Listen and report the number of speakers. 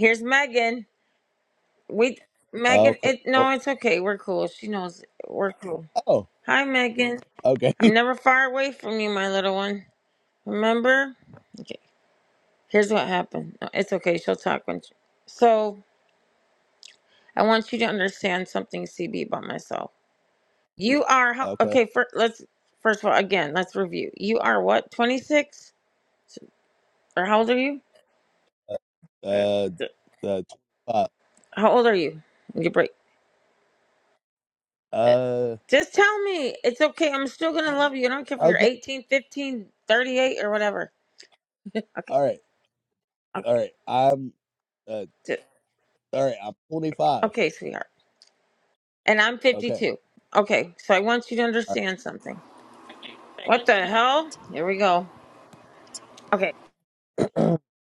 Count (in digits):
2